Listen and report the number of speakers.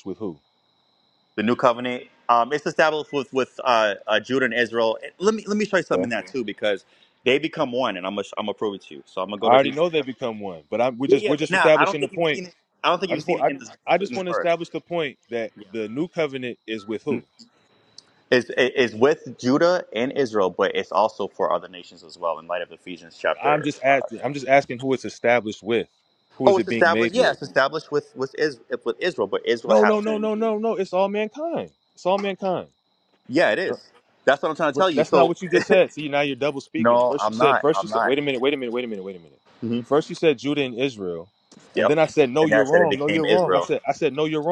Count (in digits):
2